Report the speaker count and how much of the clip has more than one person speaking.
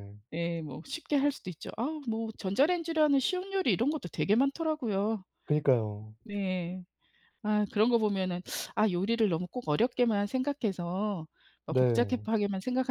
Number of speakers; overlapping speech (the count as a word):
two, about 4%